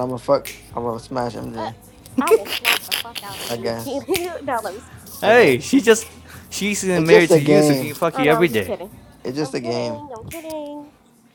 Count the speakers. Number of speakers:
three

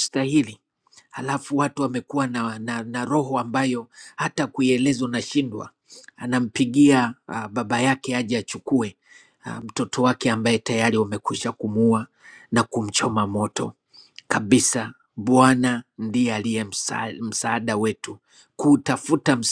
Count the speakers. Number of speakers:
one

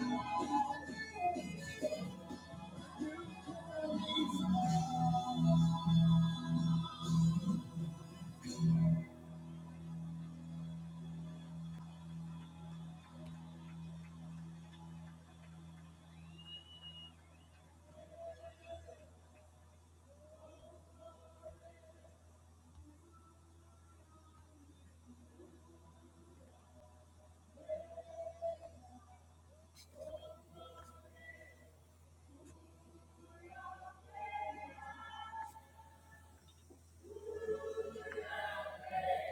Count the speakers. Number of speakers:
zero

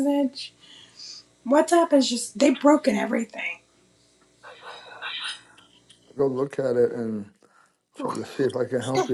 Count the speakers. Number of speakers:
two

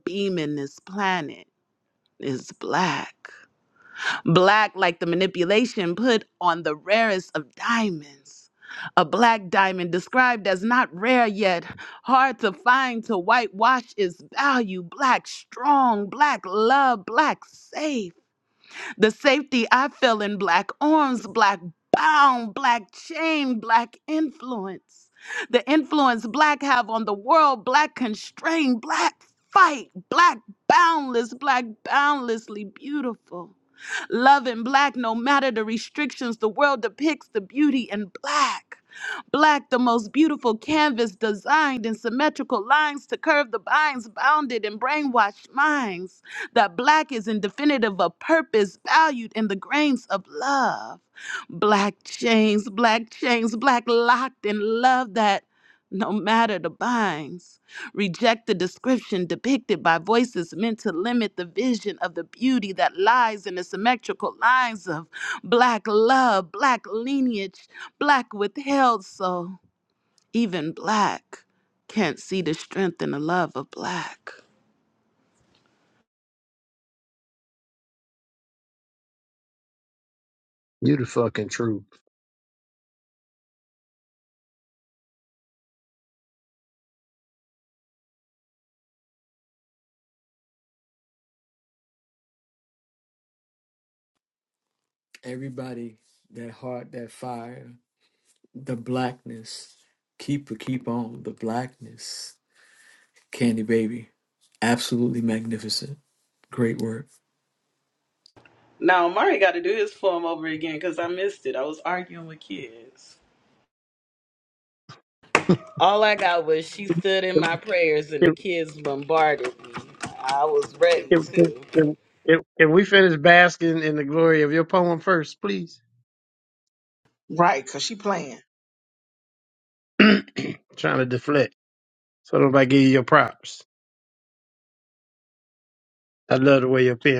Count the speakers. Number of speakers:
four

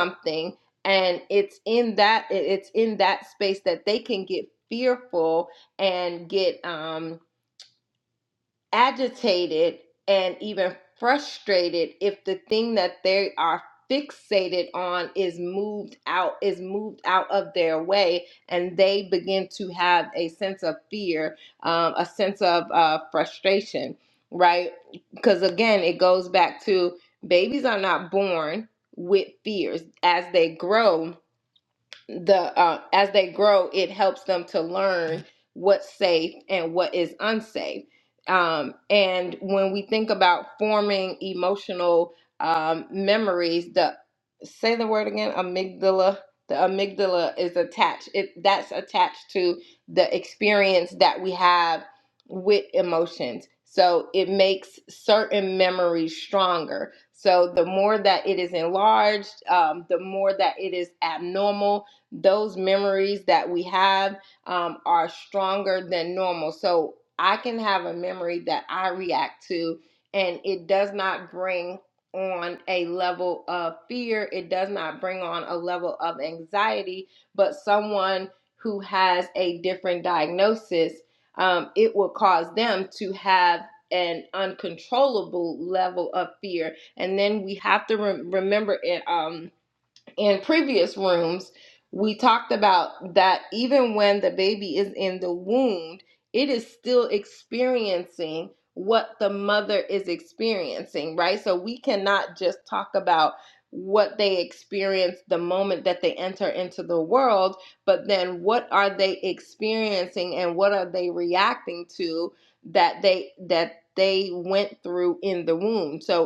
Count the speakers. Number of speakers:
one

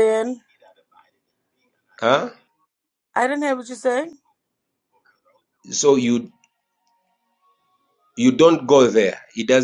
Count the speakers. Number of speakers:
two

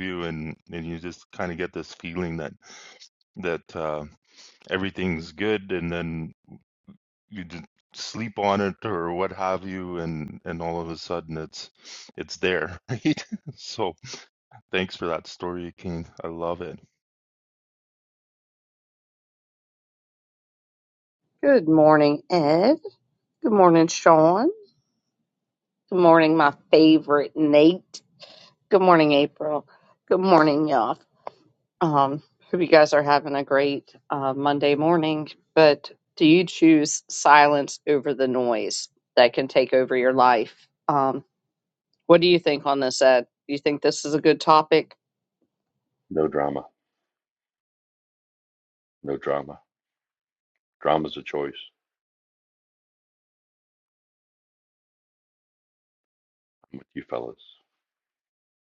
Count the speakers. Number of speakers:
three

